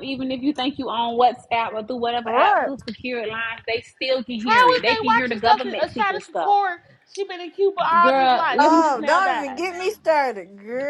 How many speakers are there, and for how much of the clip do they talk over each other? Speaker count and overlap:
3, about 39%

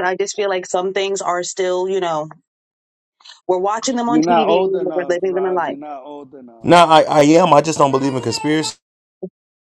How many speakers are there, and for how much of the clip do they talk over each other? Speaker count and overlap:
3, about 18%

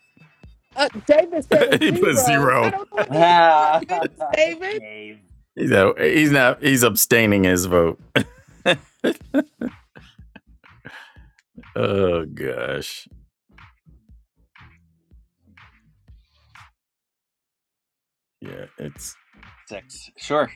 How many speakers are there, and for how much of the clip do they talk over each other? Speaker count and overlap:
3, about 9%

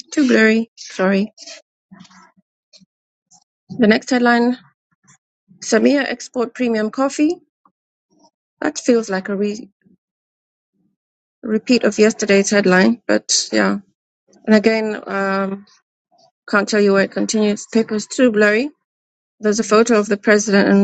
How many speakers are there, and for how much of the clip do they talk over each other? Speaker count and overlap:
1, no overlap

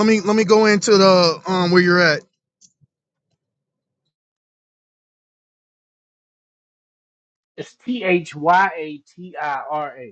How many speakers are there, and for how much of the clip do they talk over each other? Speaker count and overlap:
2, no overlap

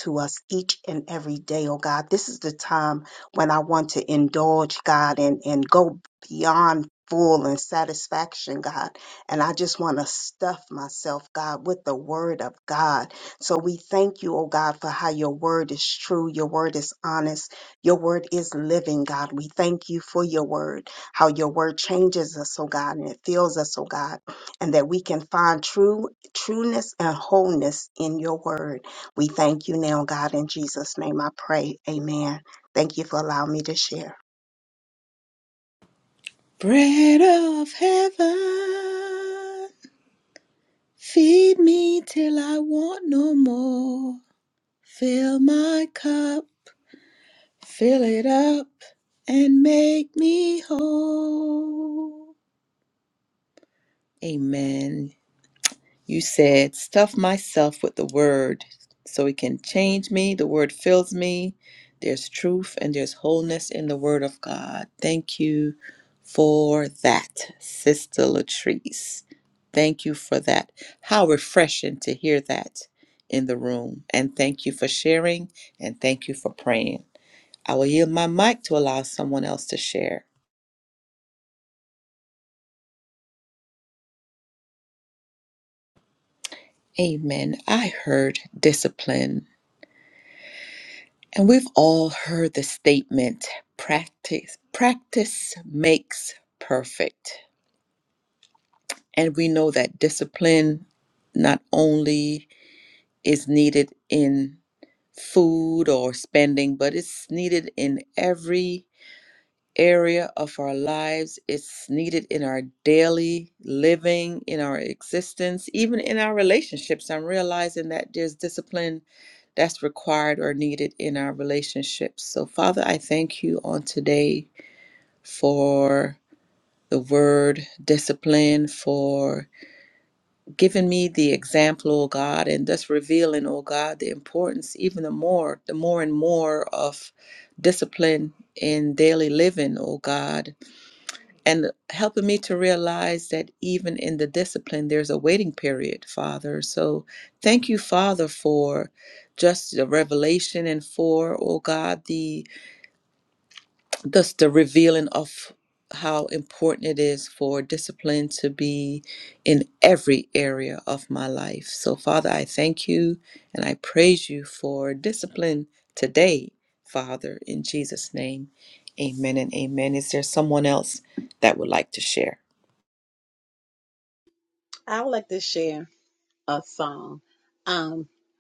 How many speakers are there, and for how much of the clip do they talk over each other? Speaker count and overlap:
3, no overlap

